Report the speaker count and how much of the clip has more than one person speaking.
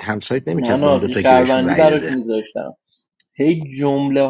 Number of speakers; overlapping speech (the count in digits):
2, about 38%